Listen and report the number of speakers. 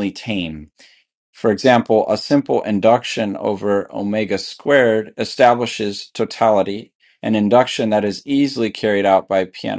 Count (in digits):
1